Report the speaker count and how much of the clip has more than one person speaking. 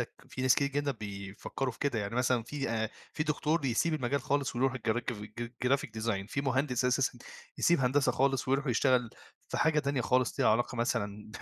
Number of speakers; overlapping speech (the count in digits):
1, no overlap